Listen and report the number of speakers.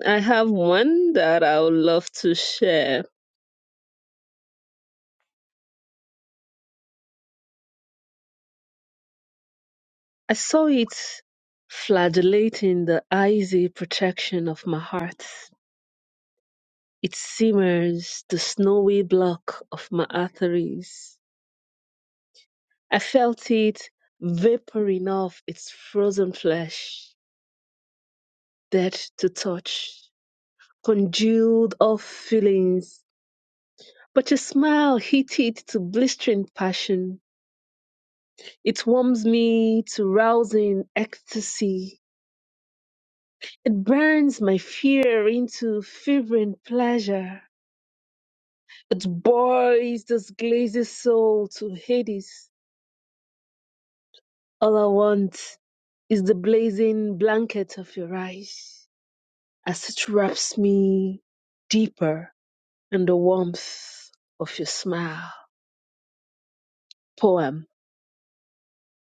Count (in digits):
1